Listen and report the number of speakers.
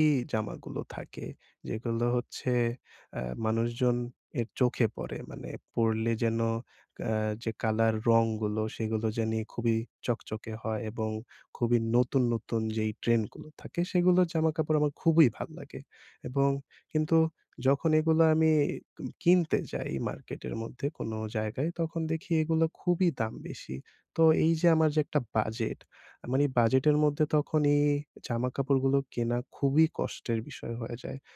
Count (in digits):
1